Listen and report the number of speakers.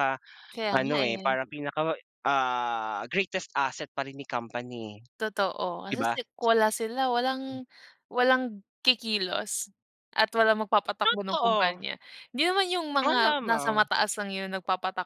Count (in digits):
2